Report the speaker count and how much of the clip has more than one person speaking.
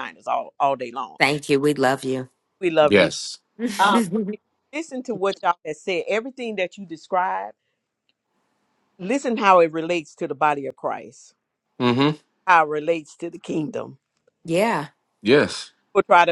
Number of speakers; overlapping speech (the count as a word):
three, about 1%